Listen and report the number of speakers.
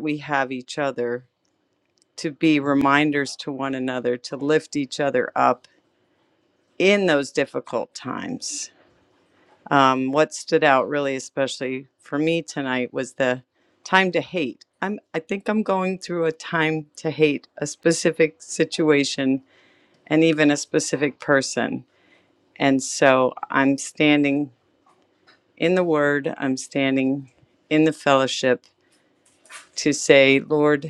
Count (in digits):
1